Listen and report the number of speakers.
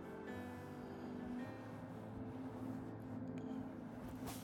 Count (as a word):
zero